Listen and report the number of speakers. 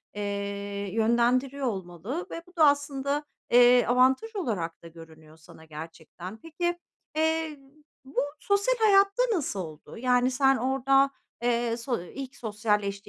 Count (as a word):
one